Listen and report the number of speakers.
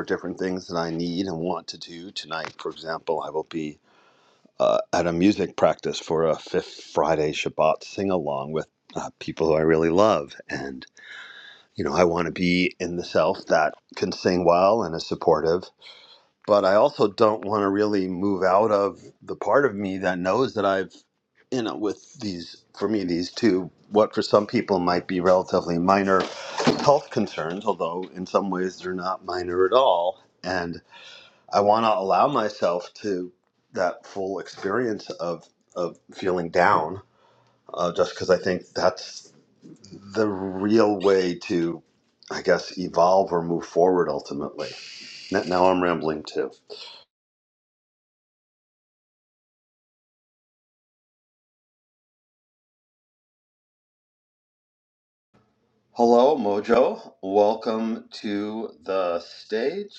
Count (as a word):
one